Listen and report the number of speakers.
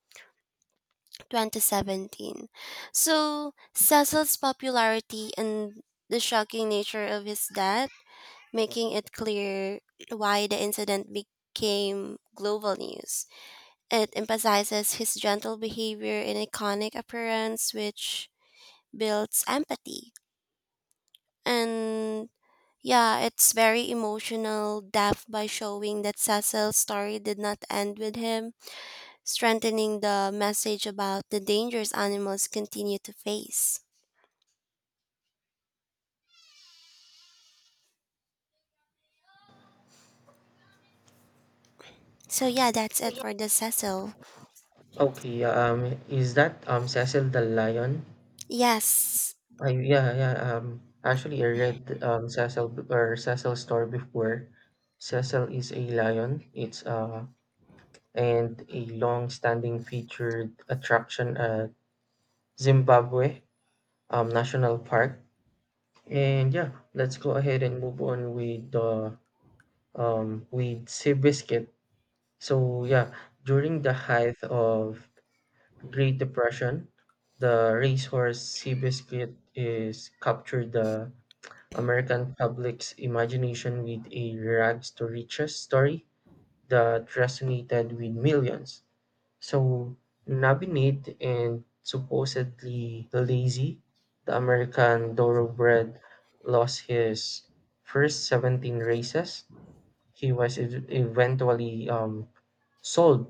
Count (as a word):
two